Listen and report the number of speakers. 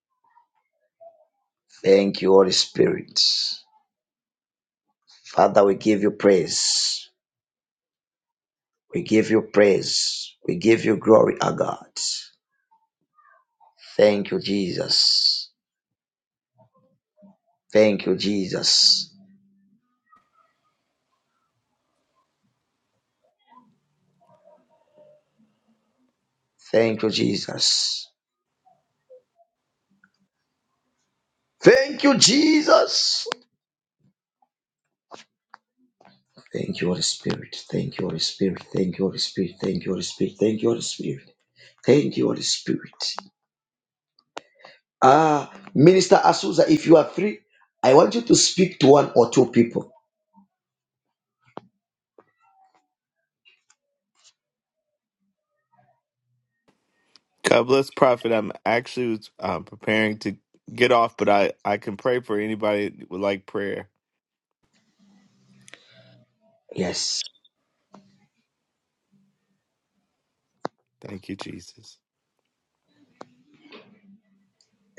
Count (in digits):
2